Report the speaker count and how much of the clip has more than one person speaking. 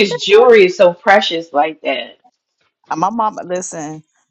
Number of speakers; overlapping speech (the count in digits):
2, under 1%